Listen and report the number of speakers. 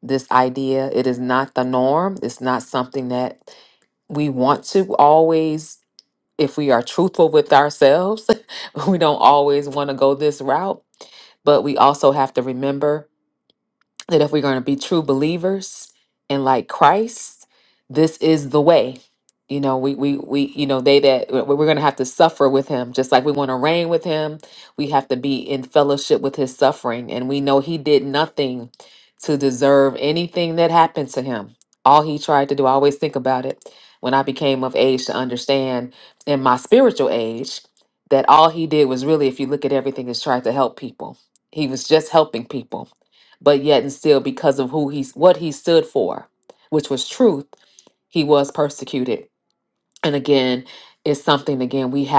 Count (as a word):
one